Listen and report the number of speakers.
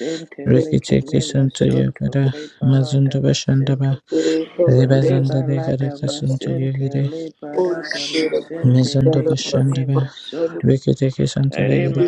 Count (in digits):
3